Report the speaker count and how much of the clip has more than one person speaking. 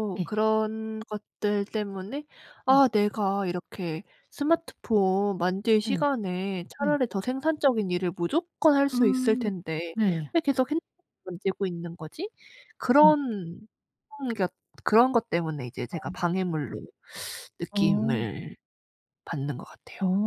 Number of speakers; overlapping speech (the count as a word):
two, about 10%